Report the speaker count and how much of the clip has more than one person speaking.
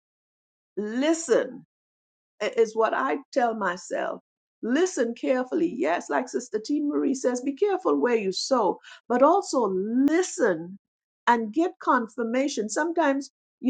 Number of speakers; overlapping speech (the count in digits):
1, no overlap